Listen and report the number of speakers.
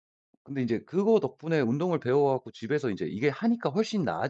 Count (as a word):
one